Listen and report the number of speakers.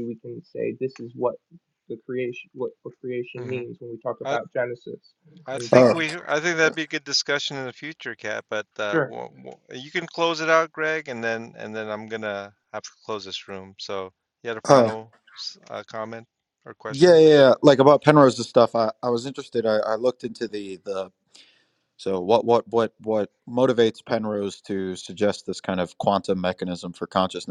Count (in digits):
3